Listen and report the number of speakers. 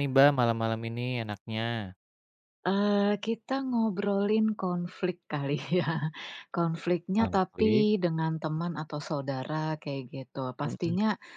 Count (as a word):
two